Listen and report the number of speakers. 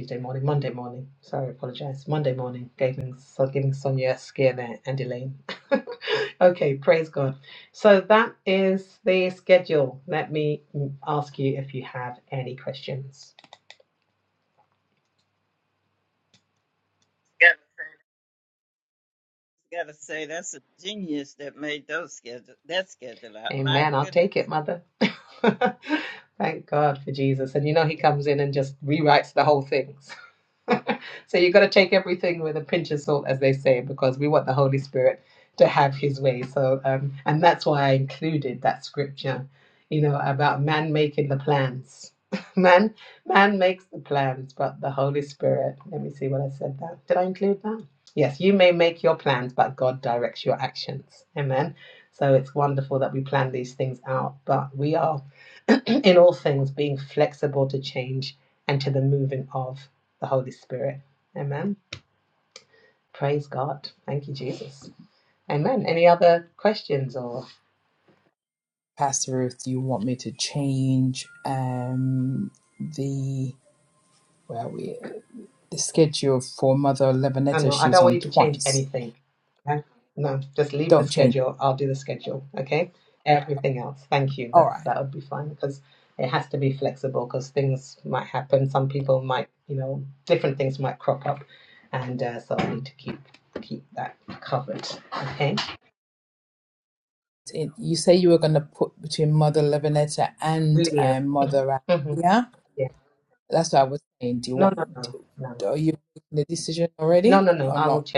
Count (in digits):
3